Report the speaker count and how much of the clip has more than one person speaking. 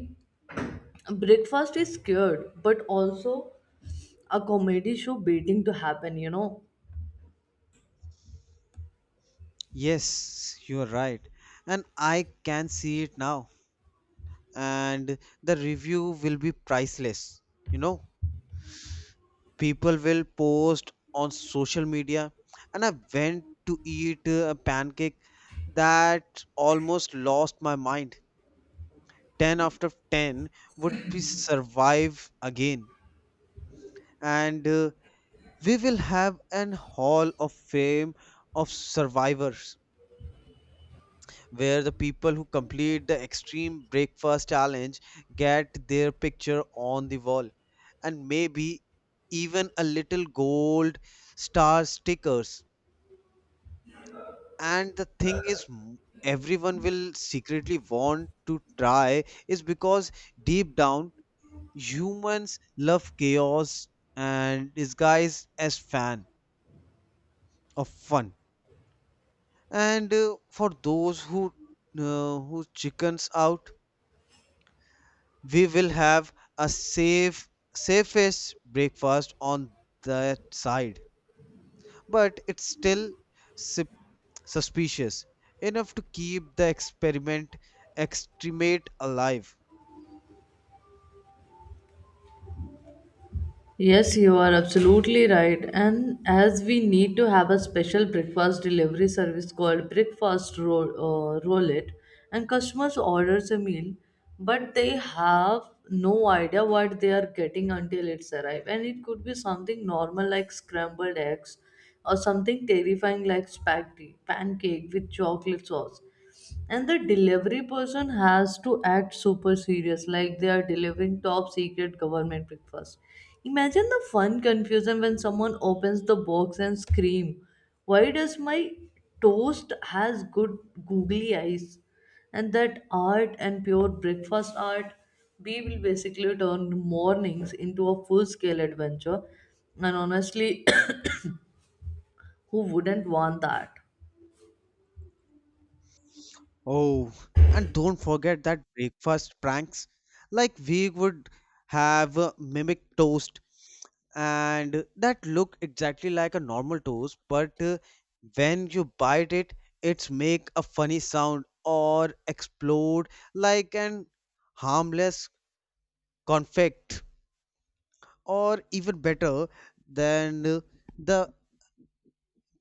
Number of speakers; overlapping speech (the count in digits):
2, no overlap